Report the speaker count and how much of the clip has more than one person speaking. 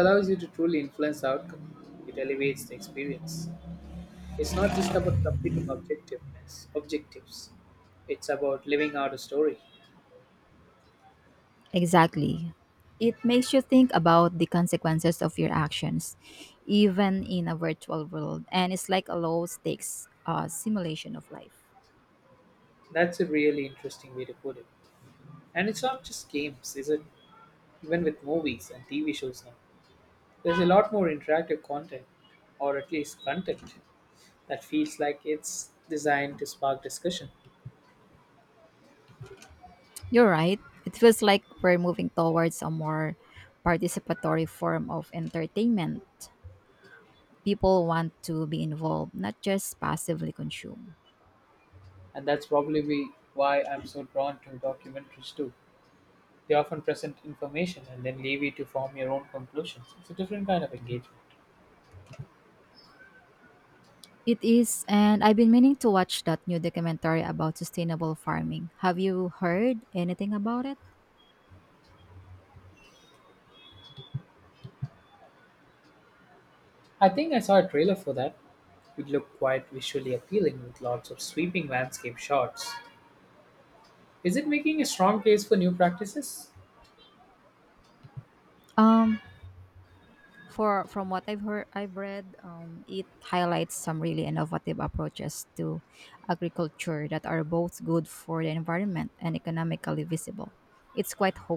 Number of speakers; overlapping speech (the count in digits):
2, no overlap